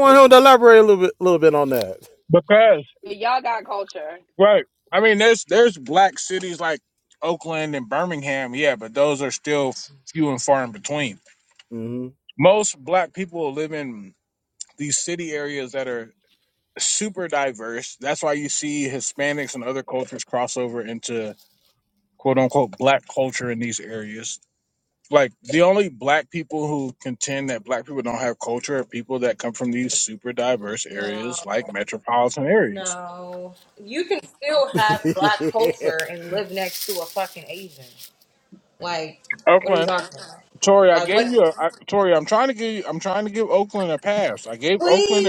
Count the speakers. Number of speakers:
4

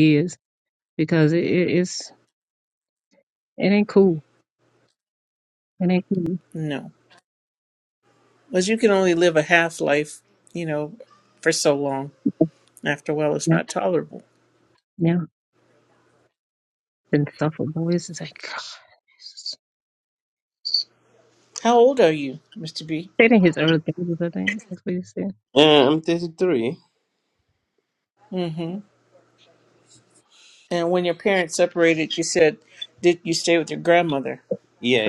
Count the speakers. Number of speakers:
3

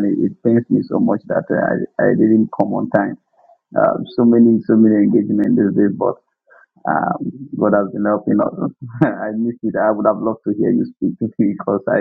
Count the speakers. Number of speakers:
1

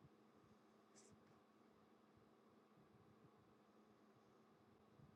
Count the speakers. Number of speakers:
0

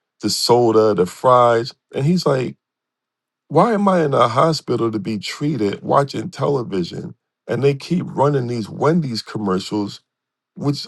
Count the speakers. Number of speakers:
1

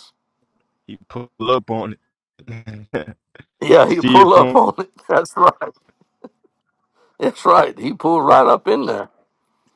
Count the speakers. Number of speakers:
2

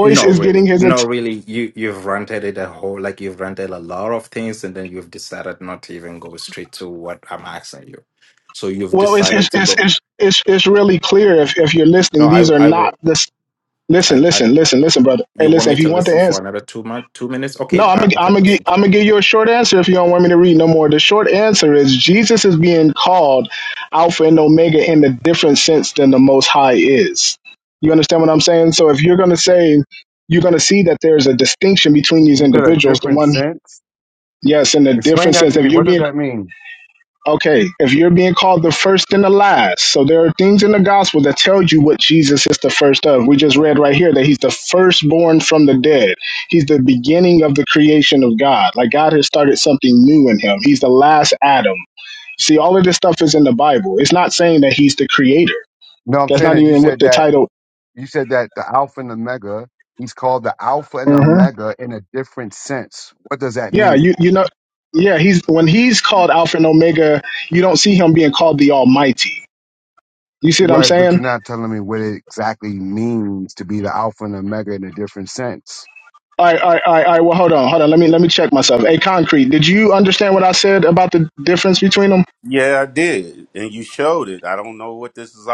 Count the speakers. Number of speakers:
4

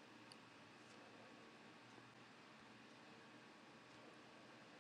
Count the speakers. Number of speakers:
0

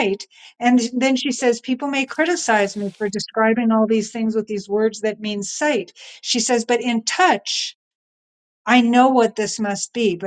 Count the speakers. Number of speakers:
1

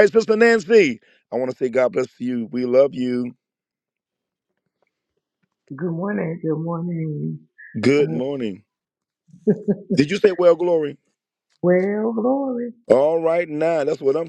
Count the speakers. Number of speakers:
2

